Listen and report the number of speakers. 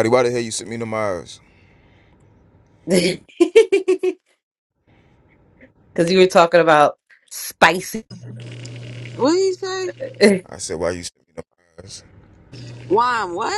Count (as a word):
three